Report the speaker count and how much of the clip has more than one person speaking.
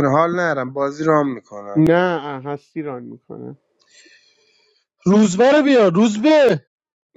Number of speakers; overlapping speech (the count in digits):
3, about 1%